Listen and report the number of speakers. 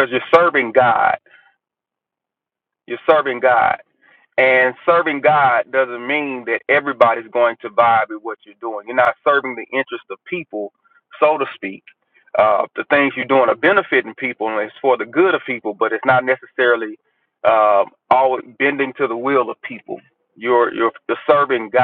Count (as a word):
one